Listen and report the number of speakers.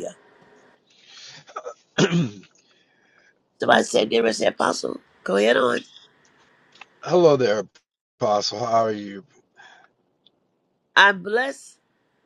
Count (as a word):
two